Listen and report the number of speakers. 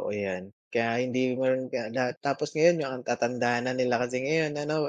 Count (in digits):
1